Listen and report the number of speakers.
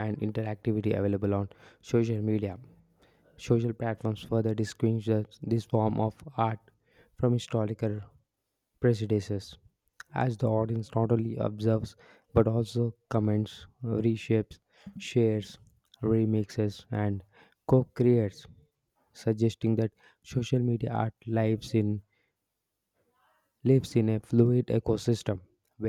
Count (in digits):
1